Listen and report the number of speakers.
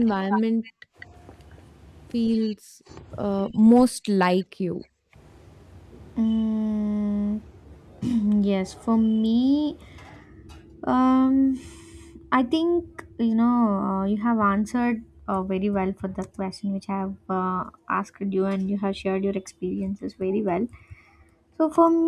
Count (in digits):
2